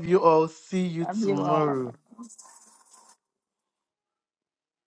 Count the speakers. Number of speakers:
1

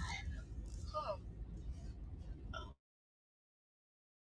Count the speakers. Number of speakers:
0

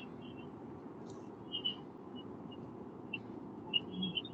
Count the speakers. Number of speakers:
0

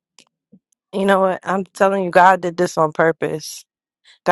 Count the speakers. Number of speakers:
1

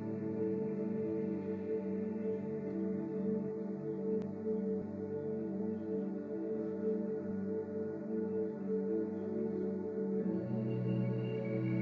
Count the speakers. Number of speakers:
0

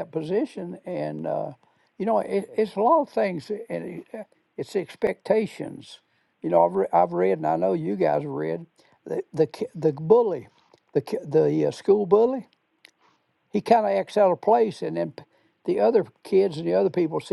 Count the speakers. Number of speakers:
1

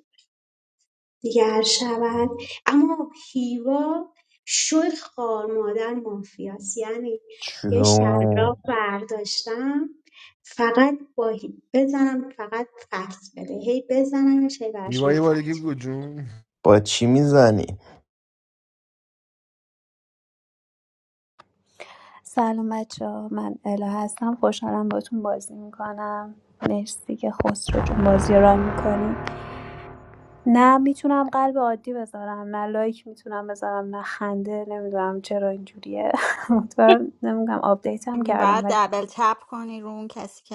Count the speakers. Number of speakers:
5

